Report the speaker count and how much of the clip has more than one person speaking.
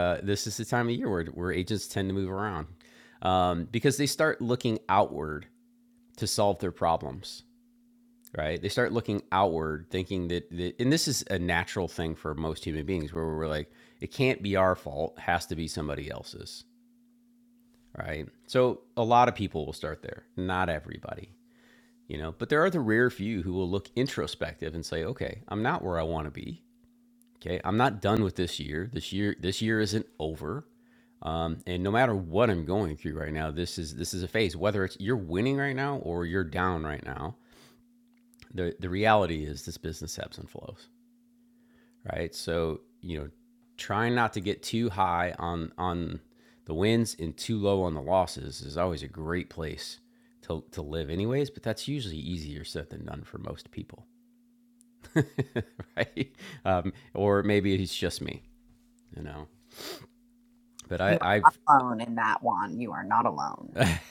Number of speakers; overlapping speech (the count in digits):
2, about 1%